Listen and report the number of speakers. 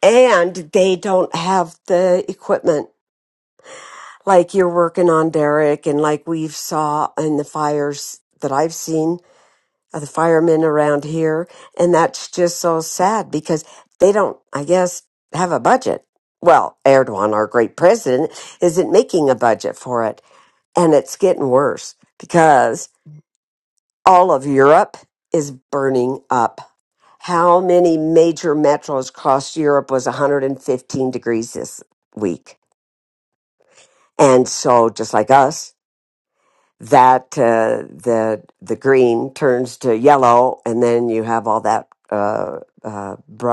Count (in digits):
1